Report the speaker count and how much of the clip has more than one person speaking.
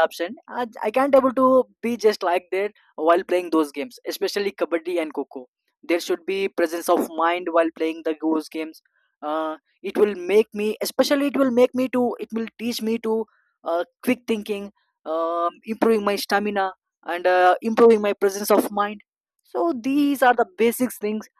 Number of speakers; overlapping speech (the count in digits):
1, no overlap